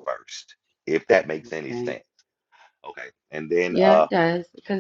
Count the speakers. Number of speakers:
2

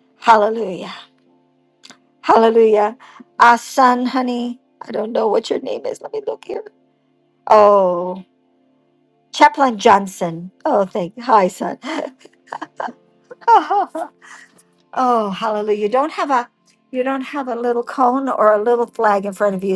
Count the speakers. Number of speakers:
1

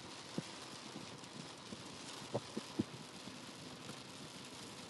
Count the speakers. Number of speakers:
0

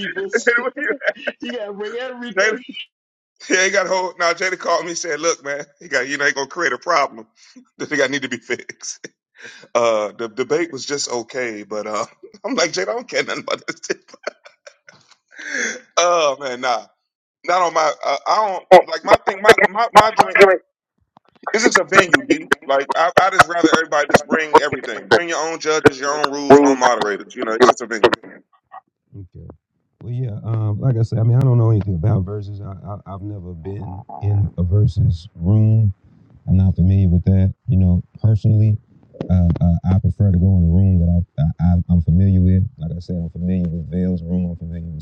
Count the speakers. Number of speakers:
3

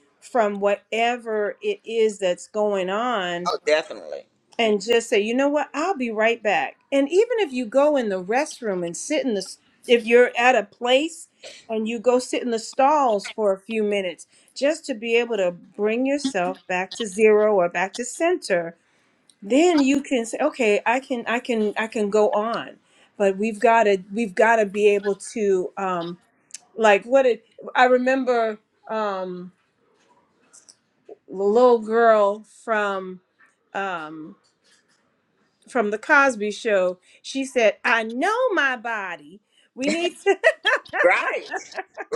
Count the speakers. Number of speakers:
2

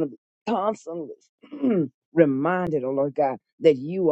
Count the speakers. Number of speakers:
1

